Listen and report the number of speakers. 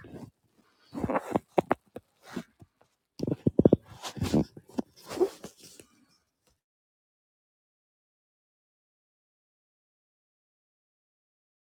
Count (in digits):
0